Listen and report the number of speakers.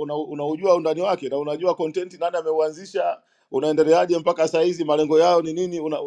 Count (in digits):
1